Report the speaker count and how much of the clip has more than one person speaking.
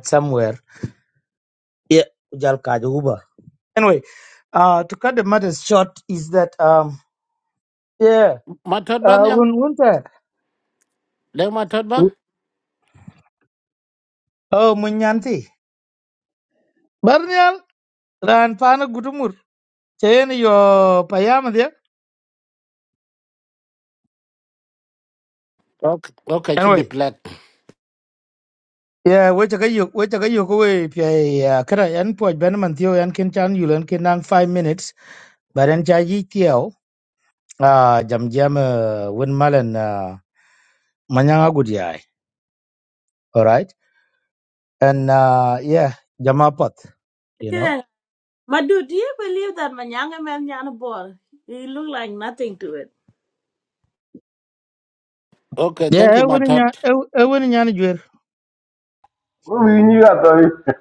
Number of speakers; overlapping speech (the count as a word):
four, about 3%